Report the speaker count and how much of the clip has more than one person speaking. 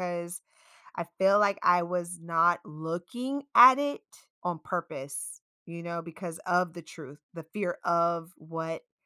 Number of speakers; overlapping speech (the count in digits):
1, no overlap